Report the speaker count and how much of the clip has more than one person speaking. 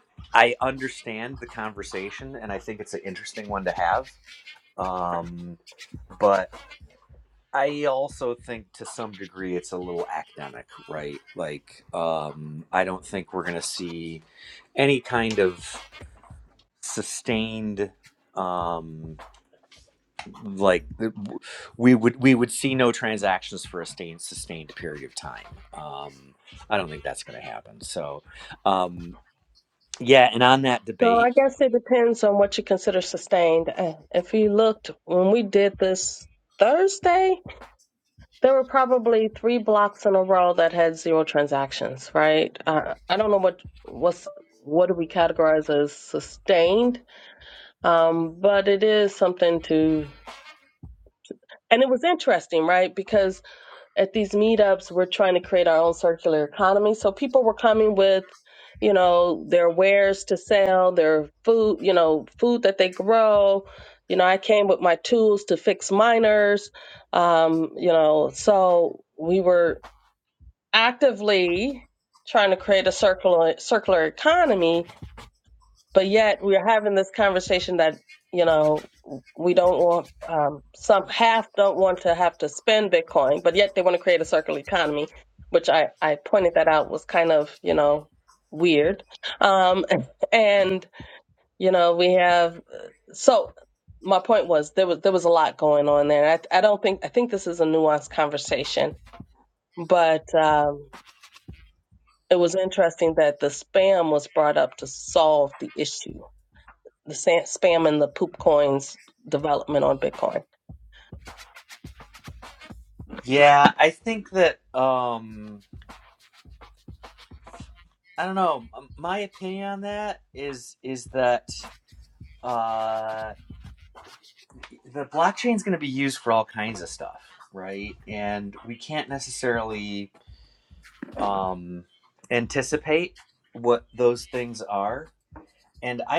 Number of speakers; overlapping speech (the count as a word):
two, under 1%